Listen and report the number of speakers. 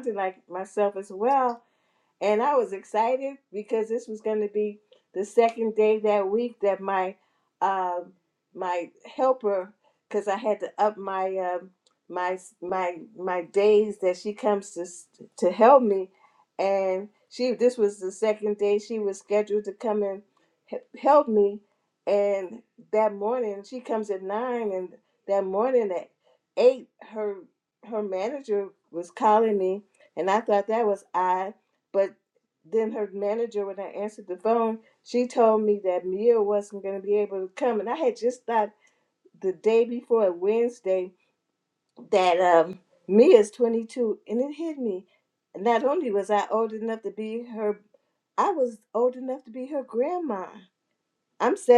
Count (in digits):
1